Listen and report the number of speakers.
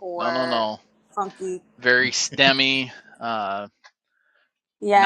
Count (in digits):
2